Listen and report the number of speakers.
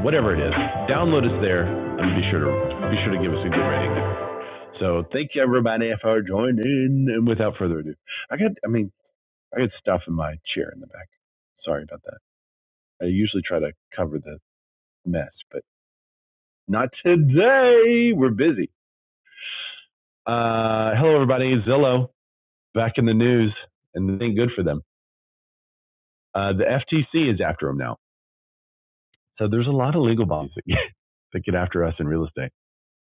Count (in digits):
1